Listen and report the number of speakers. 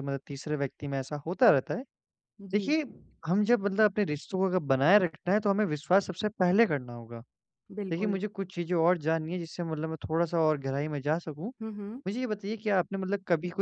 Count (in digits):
2